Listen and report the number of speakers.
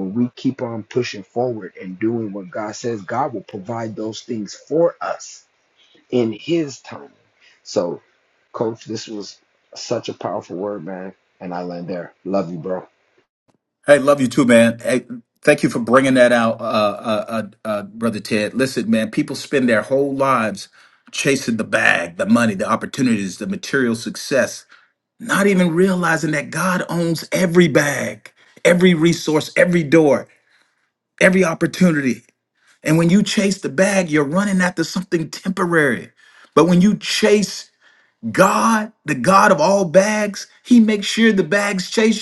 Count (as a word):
two